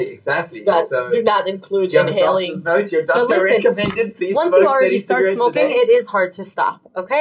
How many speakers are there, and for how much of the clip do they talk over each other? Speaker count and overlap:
three, about 49%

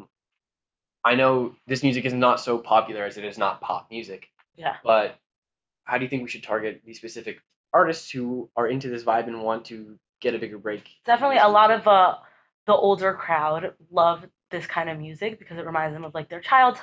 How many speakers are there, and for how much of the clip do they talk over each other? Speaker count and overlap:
two, about 6%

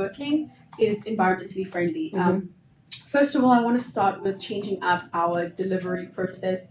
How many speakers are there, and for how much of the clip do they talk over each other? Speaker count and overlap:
one, no overlap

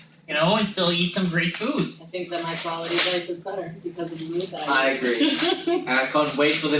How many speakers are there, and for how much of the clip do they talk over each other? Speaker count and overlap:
three, about 4%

